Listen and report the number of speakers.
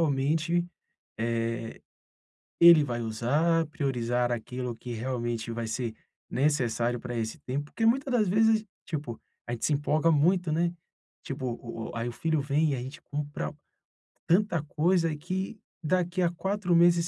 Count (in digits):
1